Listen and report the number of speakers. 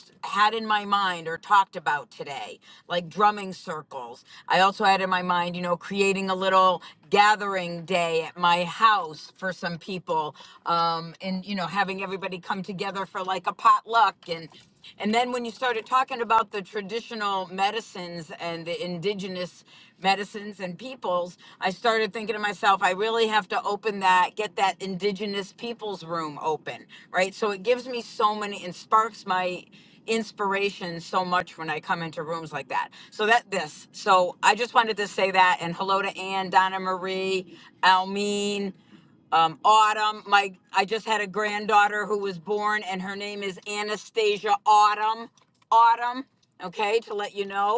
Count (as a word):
one